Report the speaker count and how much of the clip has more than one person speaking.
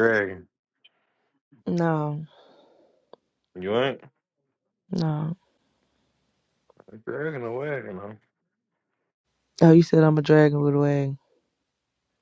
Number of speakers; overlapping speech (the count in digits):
2, no overlap